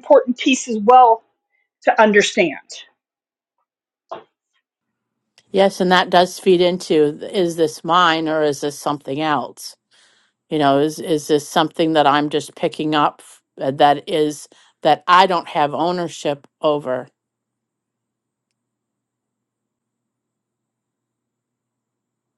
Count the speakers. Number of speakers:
2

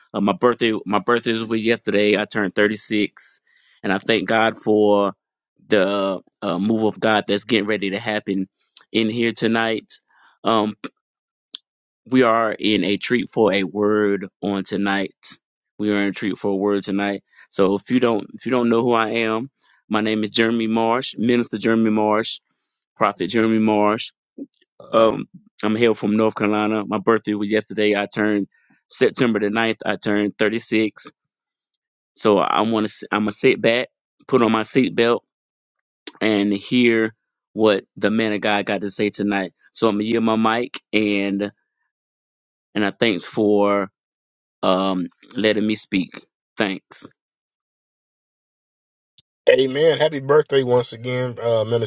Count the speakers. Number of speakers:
2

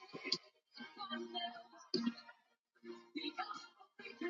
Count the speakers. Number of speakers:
0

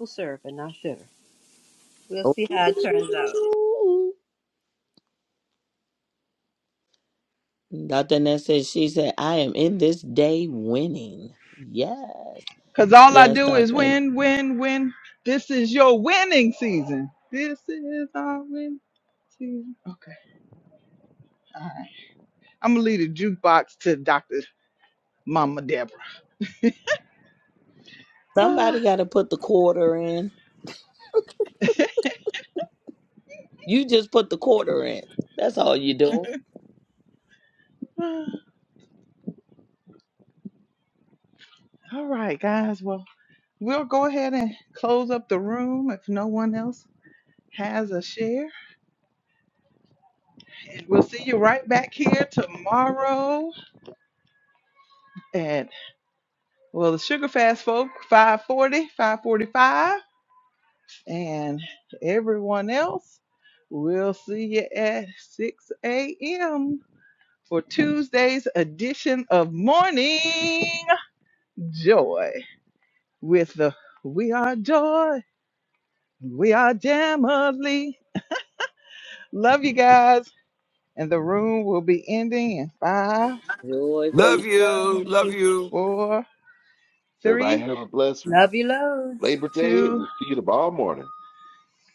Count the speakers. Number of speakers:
5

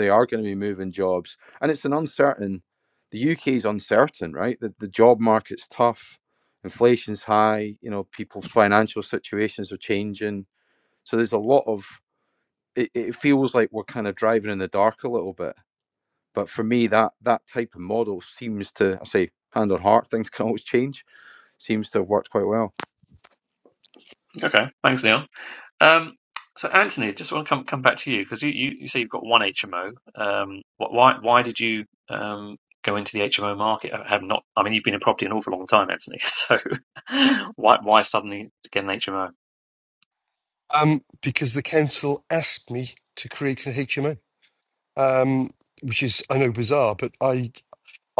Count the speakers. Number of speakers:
3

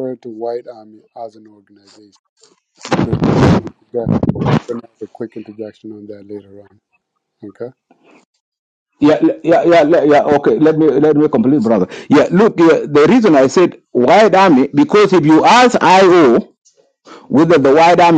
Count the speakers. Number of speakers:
2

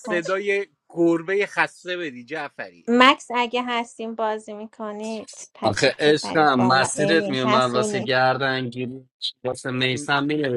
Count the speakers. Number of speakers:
3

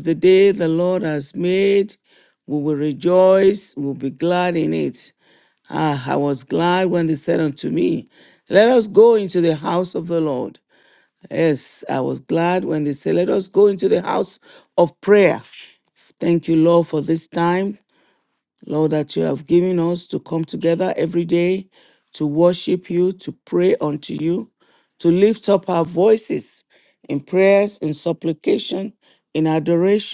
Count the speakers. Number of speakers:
1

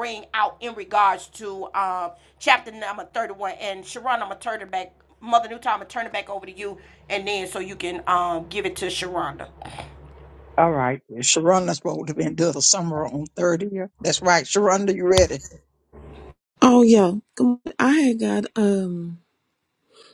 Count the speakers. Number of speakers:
3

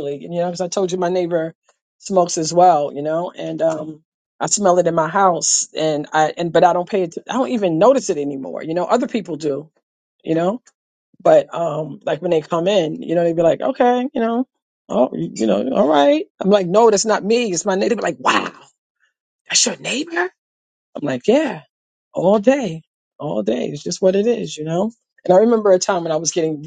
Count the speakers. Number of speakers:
1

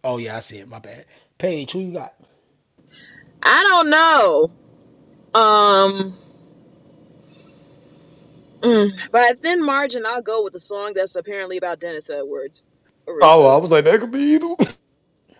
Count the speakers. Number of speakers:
3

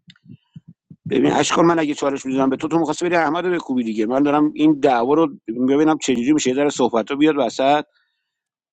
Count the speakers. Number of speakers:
1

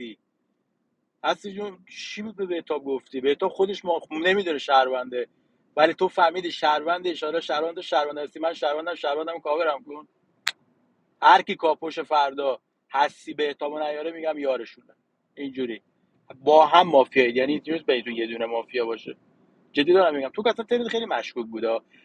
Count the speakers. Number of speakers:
1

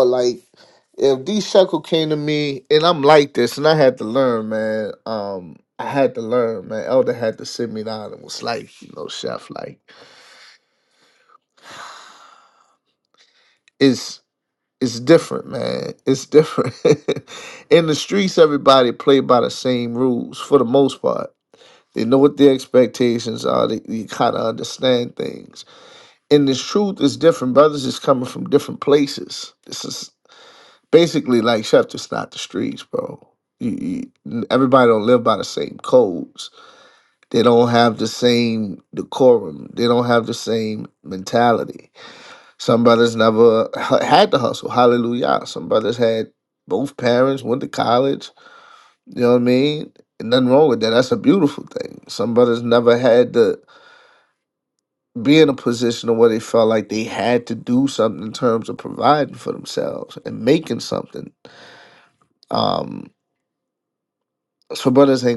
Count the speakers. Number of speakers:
1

